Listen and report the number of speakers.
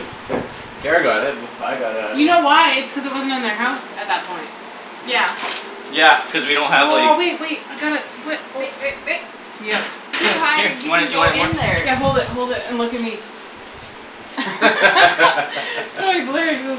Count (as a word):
four